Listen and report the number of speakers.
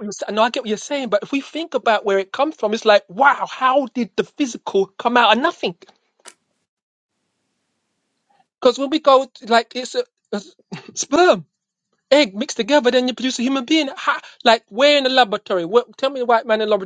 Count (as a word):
one